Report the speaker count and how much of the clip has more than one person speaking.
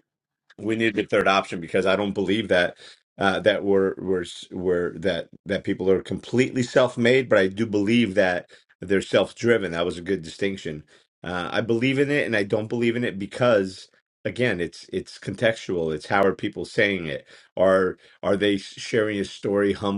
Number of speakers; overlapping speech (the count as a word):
one, no overlap